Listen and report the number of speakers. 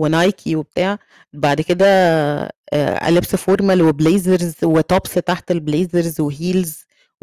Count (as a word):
one